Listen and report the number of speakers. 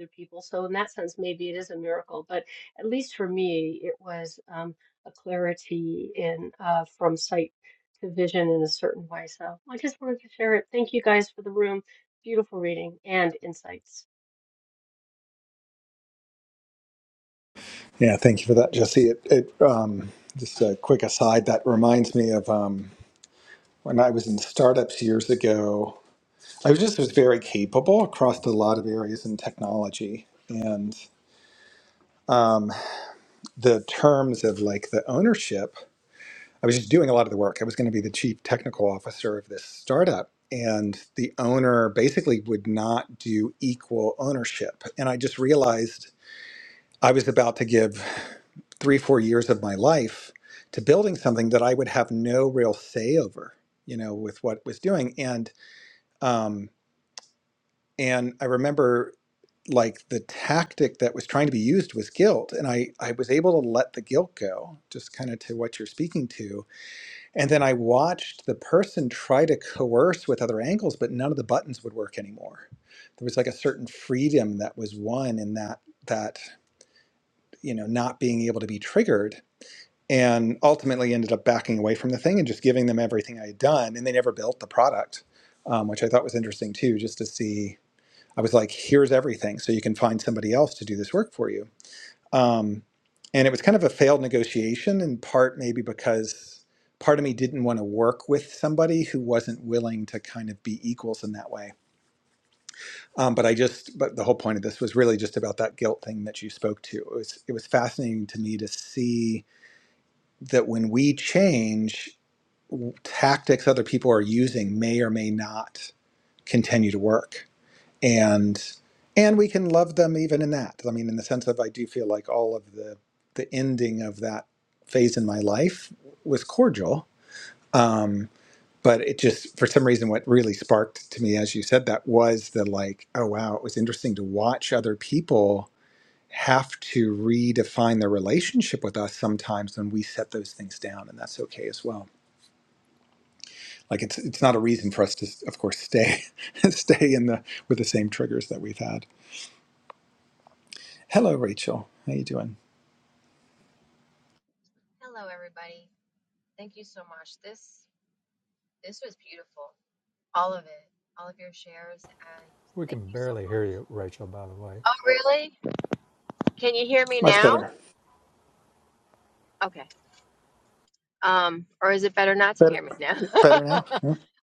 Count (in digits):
4